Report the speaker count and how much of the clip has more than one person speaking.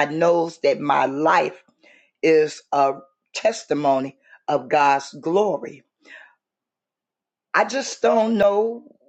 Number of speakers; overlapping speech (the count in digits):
1, no overlap